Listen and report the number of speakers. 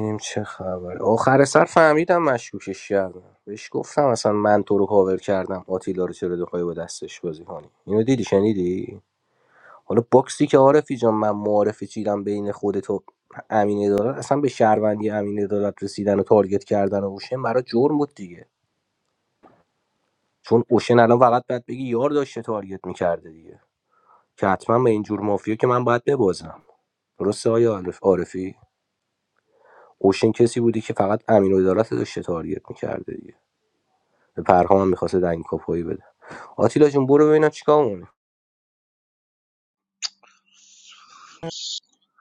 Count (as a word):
one